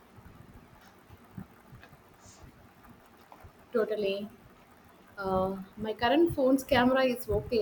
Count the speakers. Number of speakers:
1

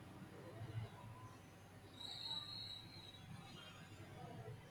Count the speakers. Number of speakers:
0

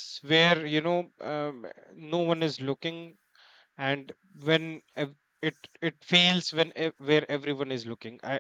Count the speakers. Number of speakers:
1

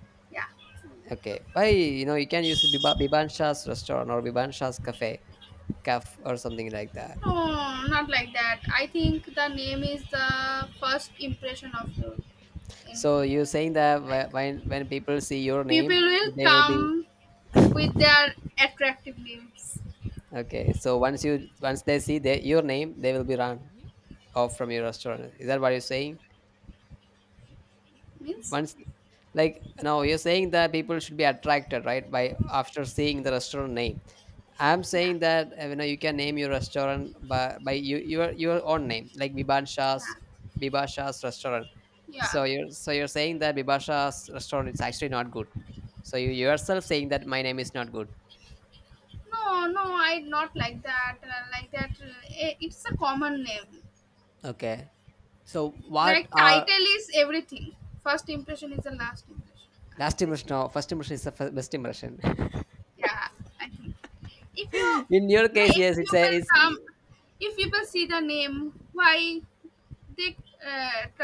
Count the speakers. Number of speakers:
2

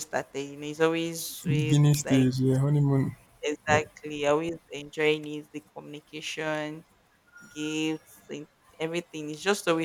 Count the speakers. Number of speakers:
2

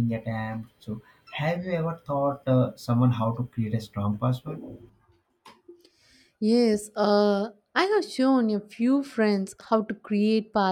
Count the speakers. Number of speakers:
2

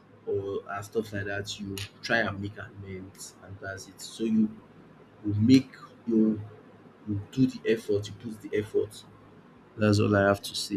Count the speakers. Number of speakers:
1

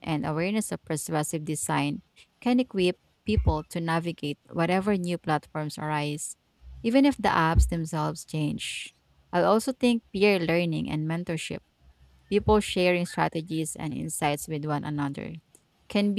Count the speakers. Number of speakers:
1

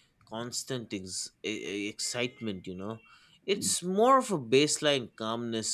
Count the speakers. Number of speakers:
1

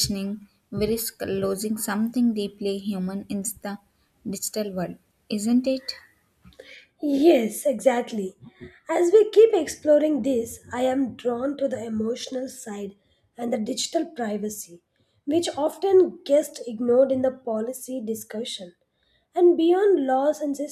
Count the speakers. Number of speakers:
2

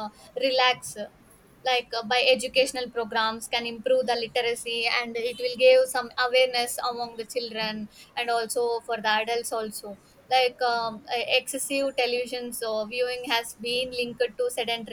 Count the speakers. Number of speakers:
1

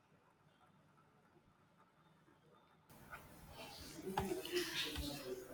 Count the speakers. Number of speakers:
0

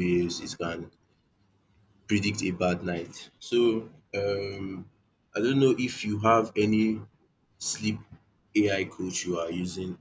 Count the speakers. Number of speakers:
1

